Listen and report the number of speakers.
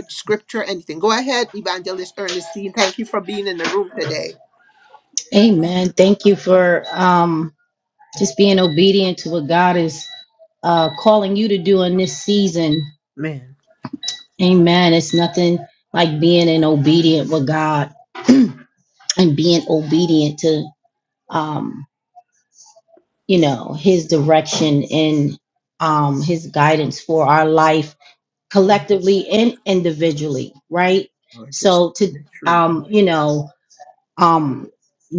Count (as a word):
two